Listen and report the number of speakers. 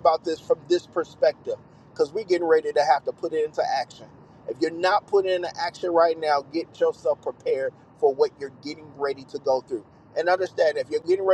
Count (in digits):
1